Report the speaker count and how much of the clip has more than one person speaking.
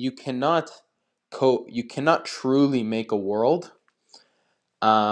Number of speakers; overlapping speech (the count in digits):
1, no overlap